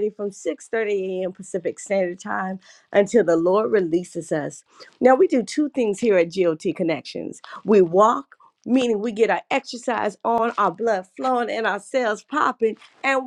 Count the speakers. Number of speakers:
1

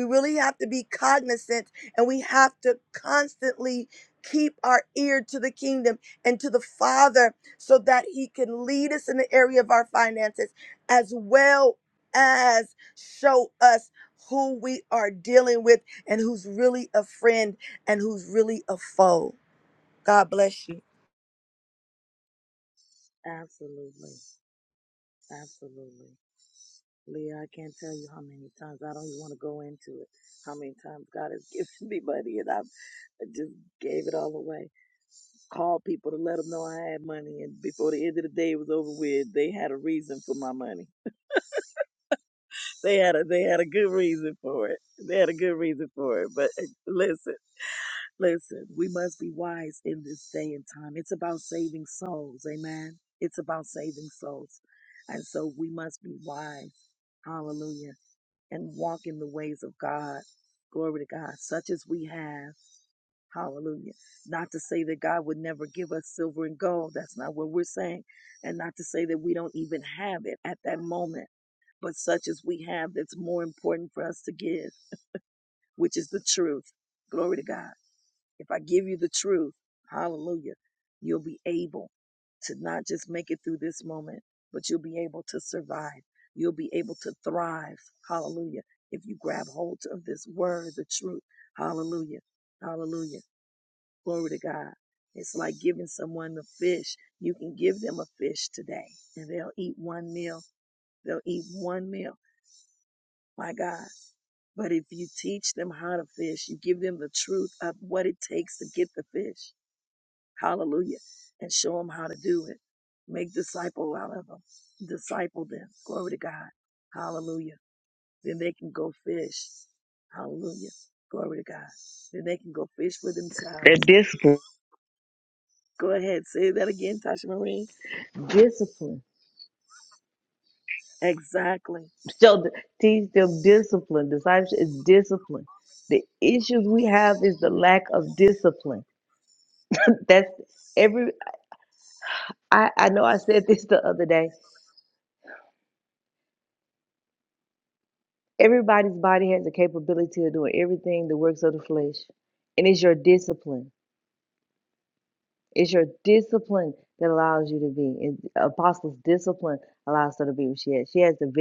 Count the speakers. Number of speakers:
3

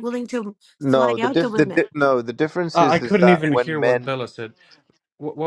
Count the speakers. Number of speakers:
3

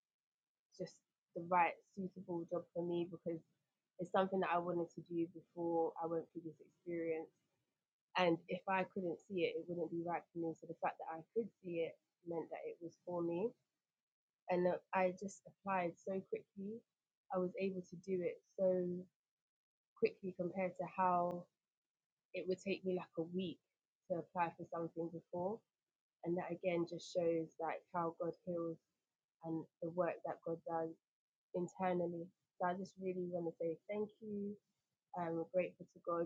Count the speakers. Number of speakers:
1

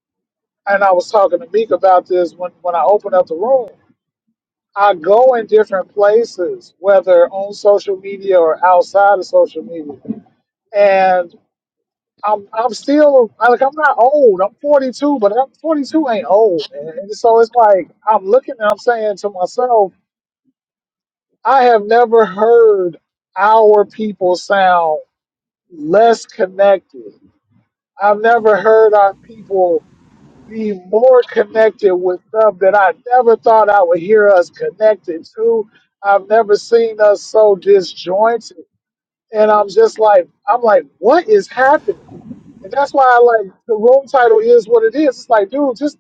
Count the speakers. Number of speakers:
1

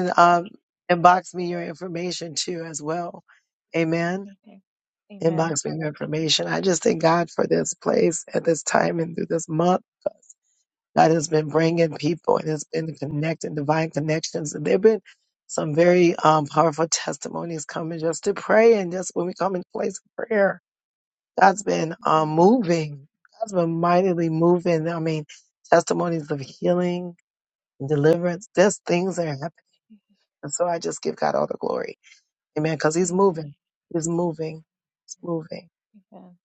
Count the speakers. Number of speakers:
2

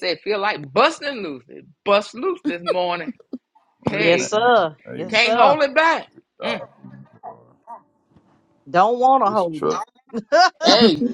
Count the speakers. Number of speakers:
3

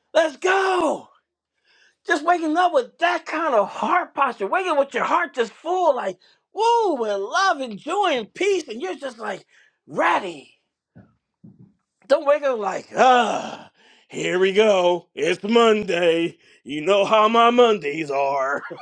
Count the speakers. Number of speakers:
1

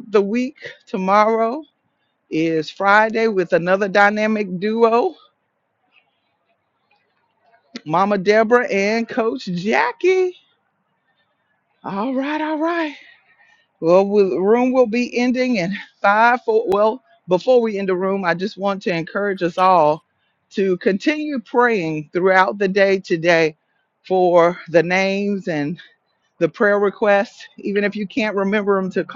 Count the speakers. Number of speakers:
1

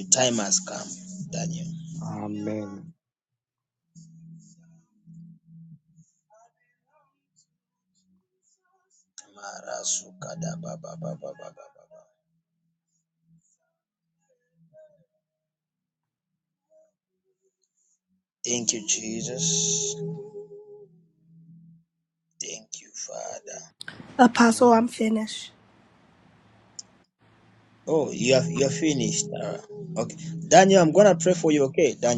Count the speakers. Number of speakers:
3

